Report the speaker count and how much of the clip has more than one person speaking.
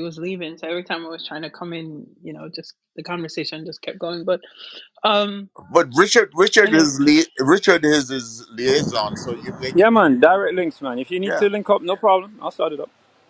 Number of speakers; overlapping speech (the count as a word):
three, about 6%